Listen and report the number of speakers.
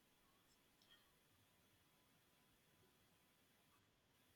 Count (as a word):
zero